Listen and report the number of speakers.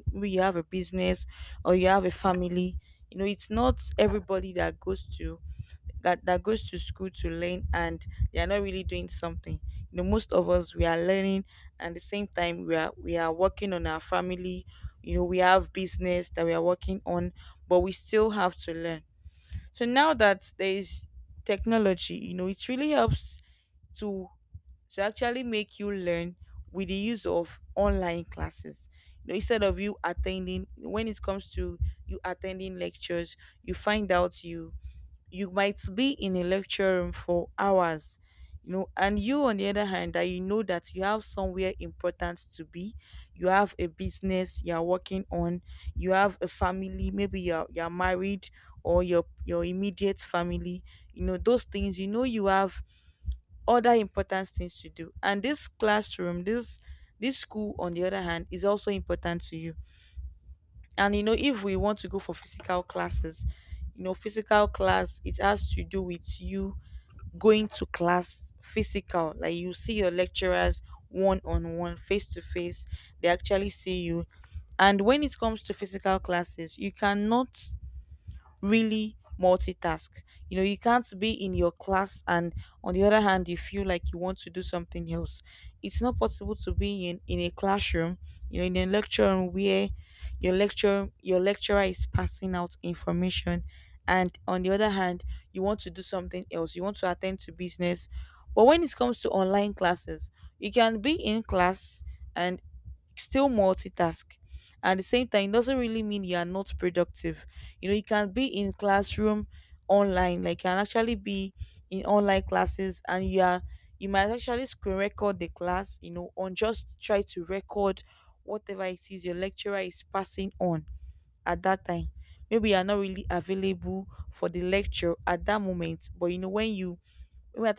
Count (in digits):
1